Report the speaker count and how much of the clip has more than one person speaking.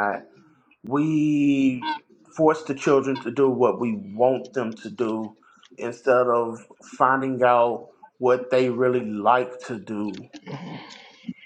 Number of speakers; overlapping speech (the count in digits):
1, no overlap